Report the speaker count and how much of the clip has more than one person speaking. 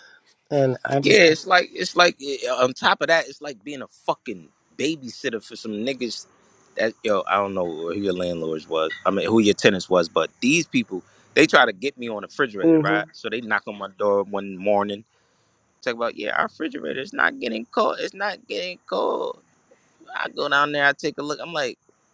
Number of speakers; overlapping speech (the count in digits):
2, about 3%